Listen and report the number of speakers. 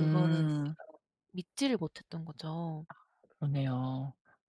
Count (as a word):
two